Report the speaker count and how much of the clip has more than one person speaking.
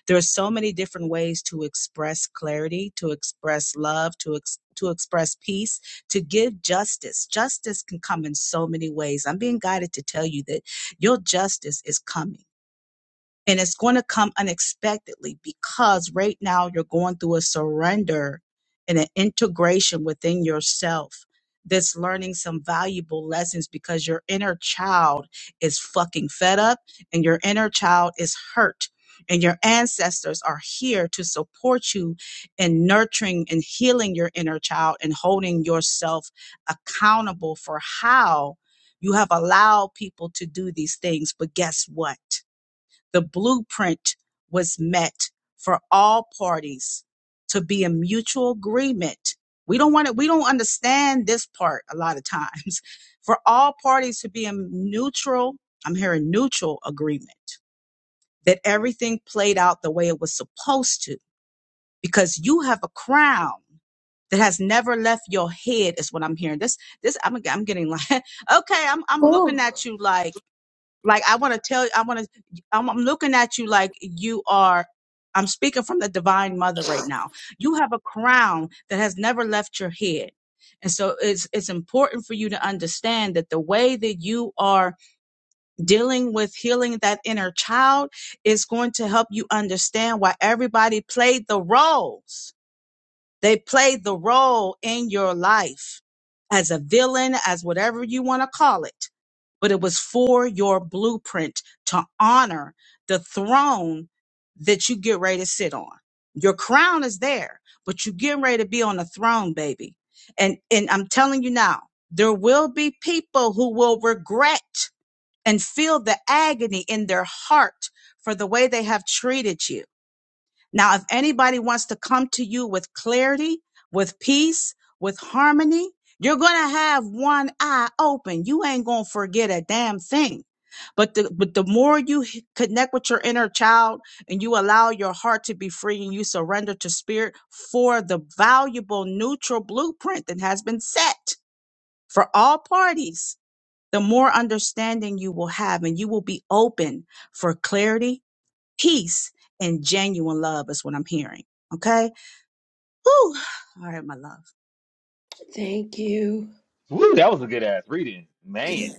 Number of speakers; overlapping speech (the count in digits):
3, under 1%